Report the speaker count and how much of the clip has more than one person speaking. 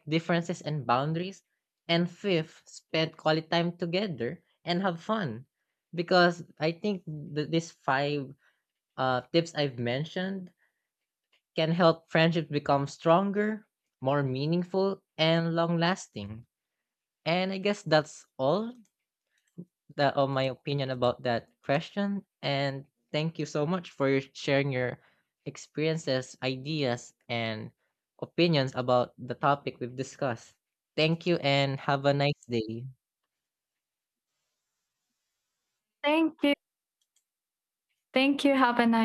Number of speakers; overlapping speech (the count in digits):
2, no overlap